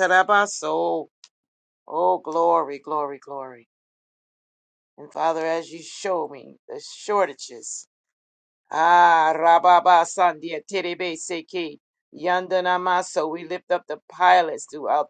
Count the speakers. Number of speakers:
1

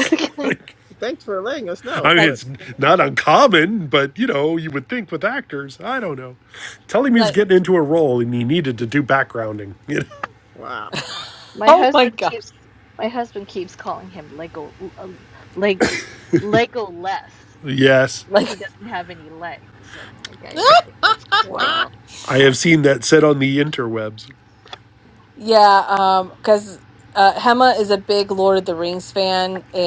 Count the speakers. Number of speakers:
4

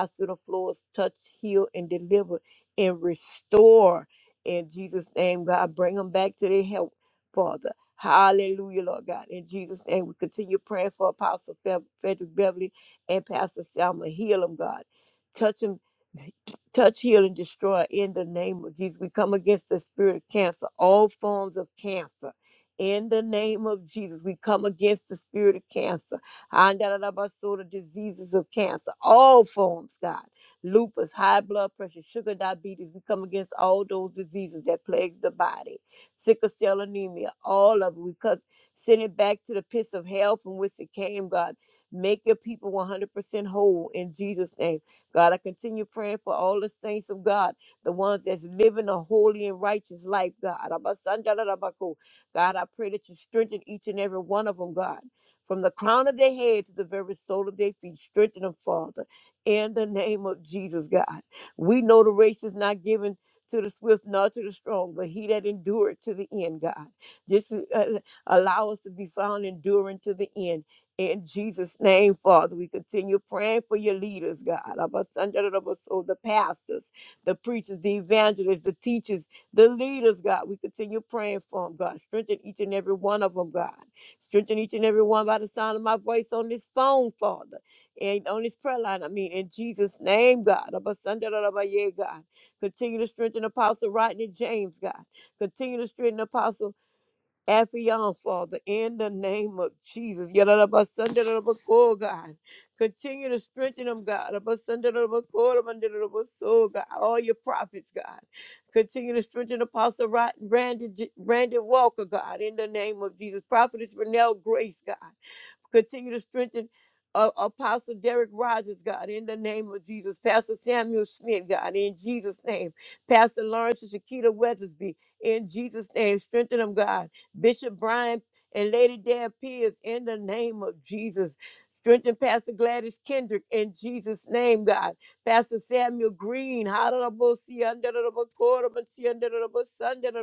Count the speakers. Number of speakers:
1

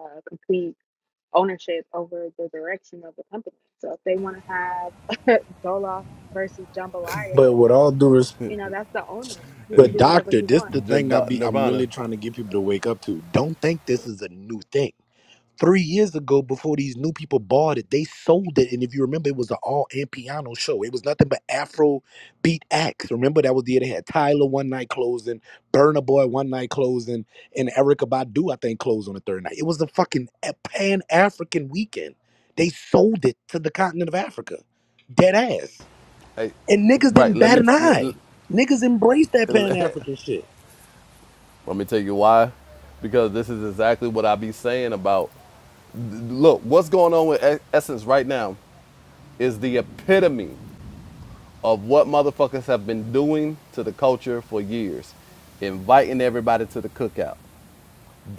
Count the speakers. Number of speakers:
3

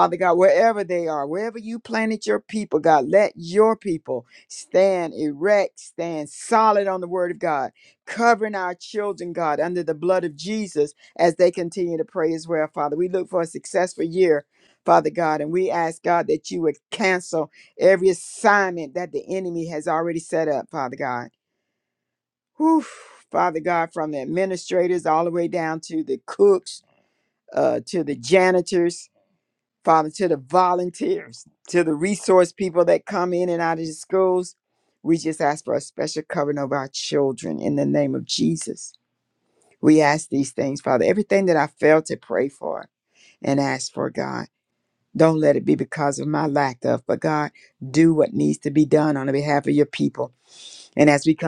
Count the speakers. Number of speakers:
1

